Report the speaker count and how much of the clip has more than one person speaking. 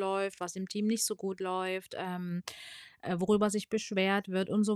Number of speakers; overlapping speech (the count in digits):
1, no overlap